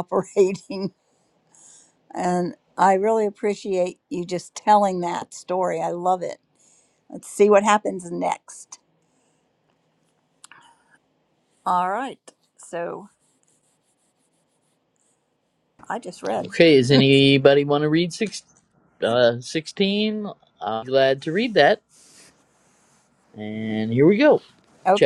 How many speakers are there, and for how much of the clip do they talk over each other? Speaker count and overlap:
2, about 1%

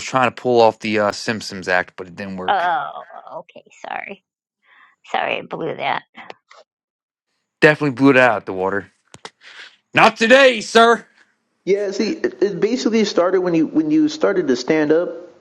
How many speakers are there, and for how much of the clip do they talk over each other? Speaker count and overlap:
3, about 1%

